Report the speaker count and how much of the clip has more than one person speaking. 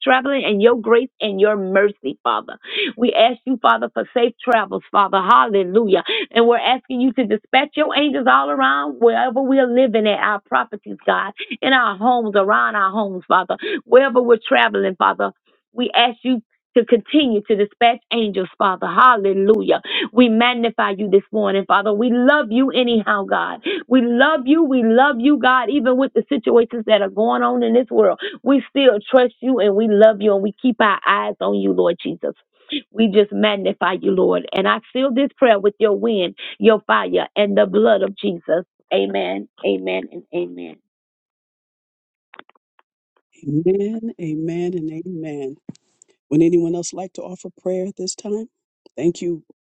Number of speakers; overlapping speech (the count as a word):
two, no overlap